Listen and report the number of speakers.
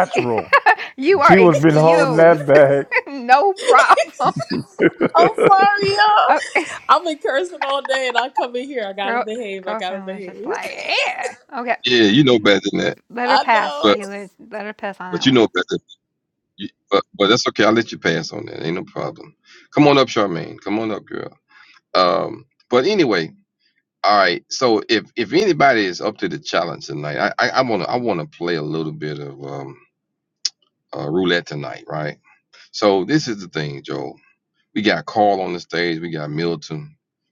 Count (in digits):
4